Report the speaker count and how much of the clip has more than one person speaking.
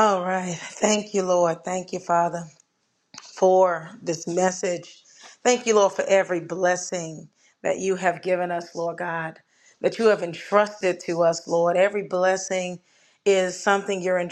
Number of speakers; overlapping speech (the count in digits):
1, no overlap